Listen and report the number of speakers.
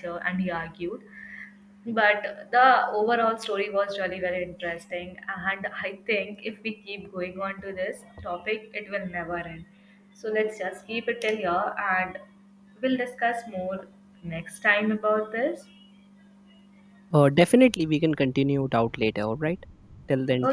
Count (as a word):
two